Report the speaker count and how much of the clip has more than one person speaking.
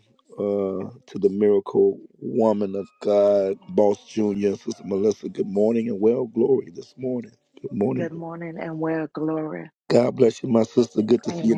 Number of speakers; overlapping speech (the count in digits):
2, about 4%